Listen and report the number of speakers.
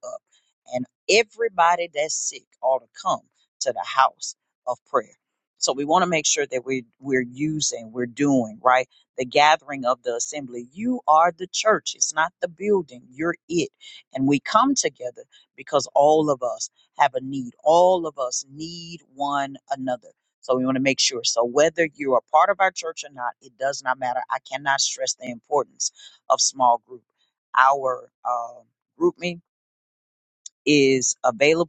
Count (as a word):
one